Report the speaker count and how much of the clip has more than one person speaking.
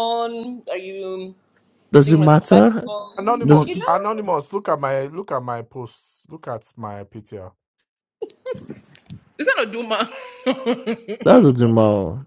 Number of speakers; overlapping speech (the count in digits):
3, about 13%